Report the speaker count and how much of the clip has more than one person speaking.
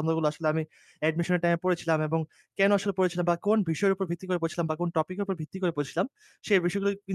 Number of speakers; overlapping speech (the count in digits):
1, no overlap